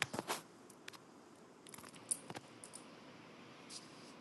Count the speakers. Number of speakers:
zero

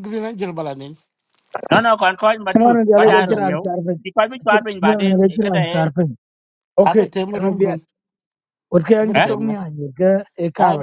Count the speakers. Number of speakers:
three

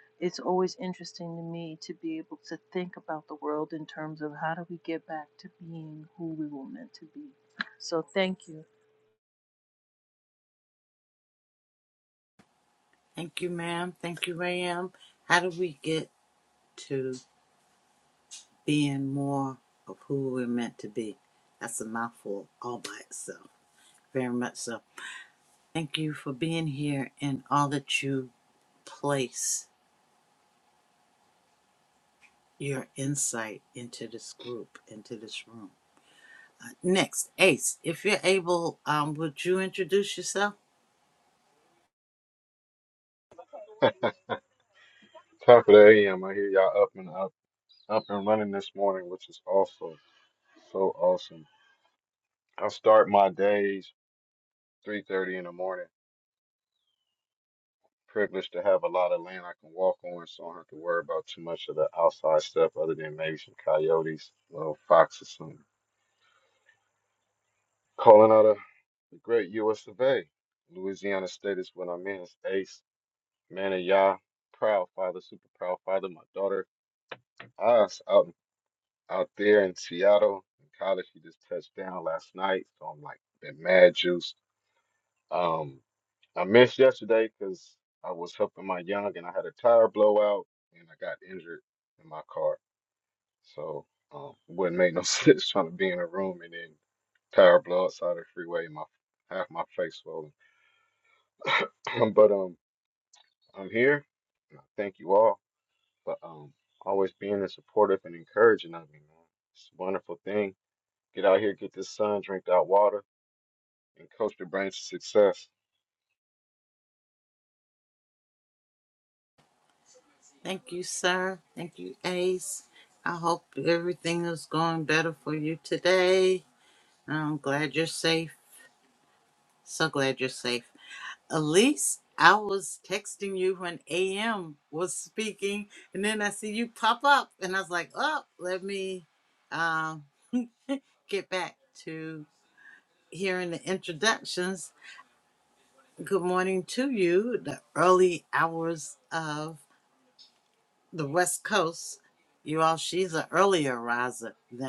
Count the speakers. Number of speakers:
three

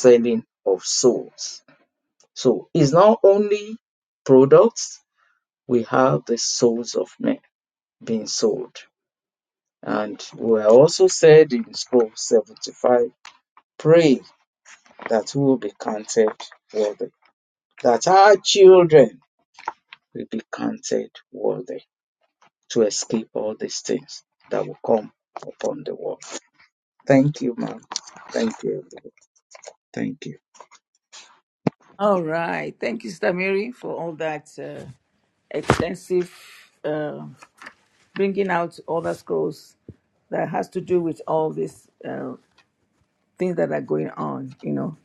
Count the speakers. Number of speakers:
two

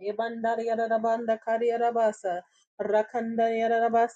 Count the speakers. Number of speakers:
one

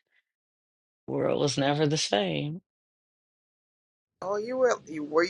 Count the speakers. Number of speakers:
two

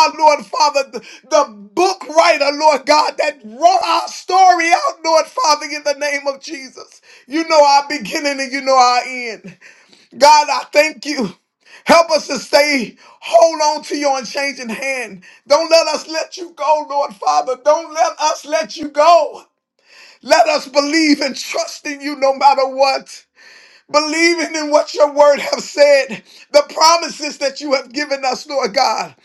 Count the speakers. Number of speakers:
one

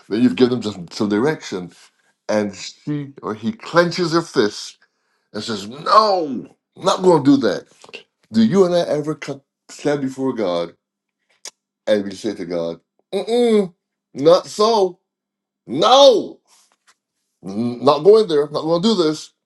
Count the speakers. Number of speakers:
one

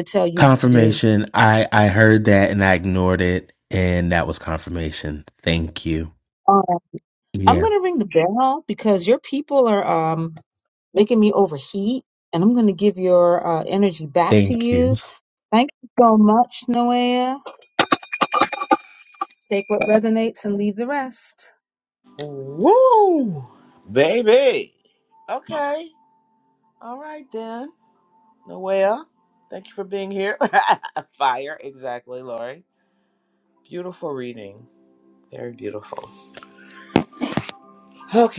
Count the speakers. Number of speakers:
three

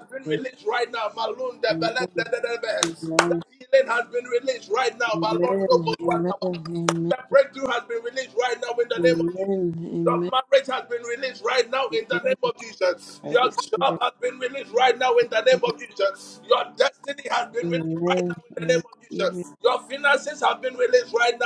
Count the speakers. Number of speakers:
two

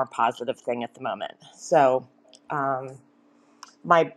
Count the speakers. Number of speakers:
one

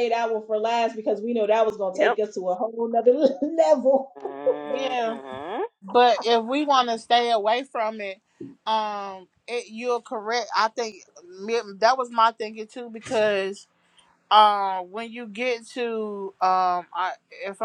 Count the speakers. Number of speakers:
three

